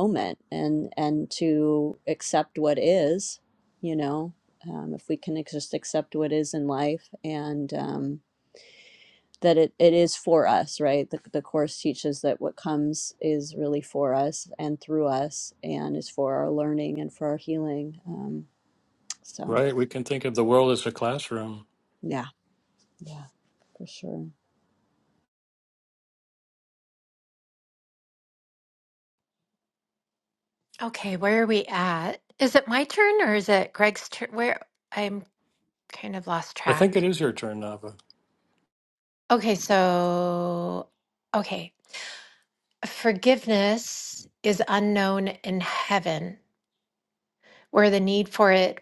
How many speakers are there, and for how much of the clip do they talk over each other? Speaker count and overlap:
3, about 1%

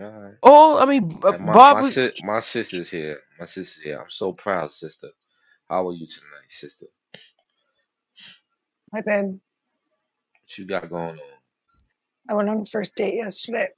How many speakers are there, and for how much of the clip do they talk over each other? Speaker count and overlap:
3, about 3%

